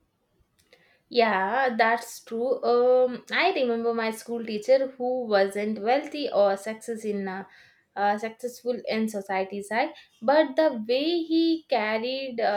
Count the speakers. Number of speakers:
1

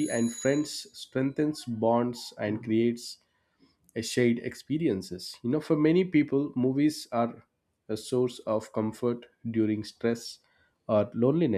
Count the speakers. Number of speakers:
1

